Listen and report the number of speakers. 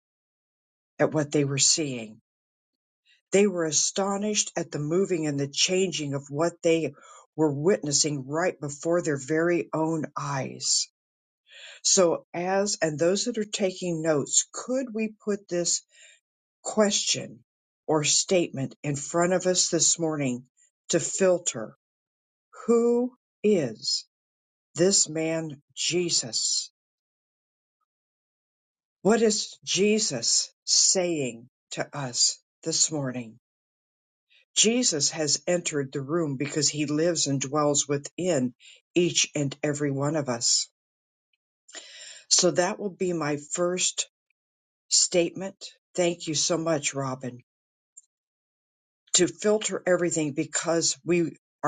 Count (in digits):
1